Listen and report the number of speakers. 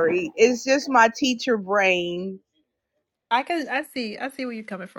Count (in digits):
2